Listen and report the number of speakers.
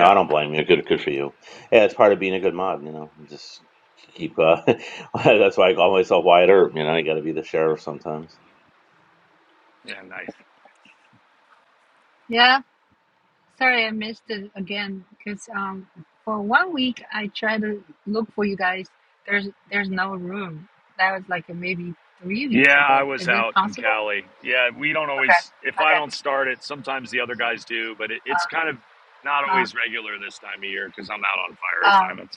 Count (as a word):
three